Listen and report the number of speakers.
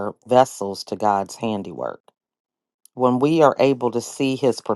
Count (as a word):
one